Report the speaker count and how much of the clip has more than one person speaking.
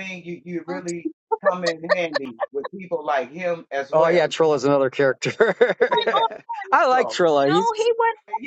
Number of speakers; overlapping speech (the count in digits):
3, about 23%